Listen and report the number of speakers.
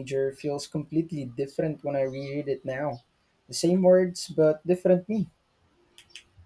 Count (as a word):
one